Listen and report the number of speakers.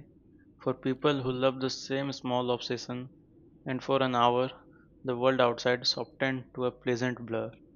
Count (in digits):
1